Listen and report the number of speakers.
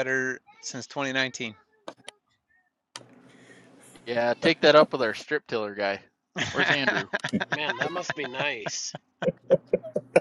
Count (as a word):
three